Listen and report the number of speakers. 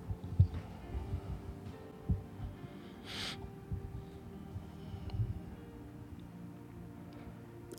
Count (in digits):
0